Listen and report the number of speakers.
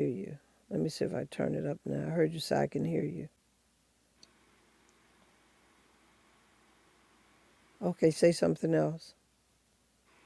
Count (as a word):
one